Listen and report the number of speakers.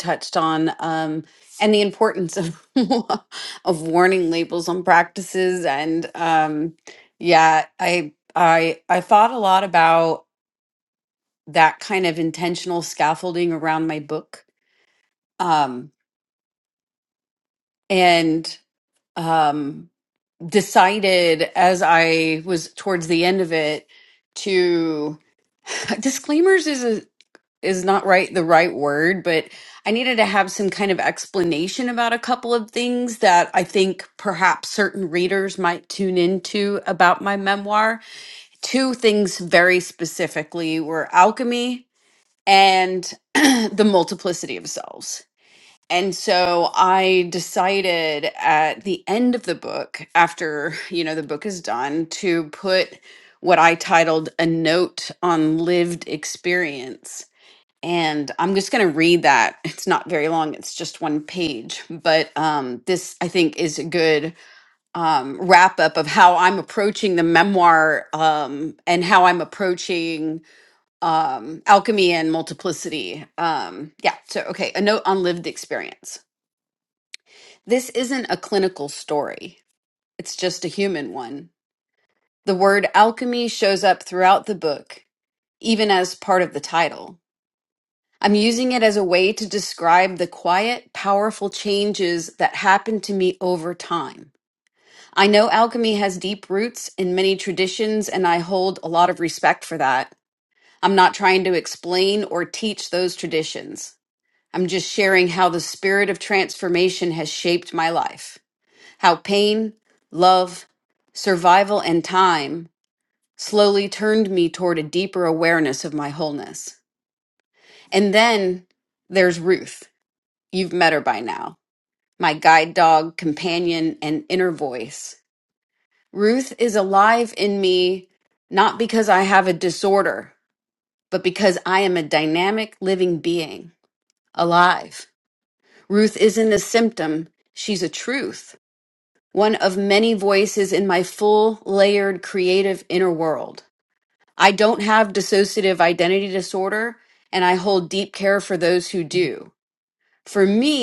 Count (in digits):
1